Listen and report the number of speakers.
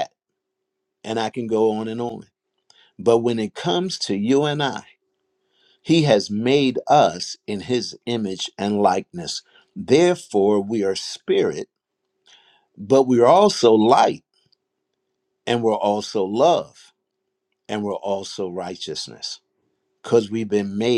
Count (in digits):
1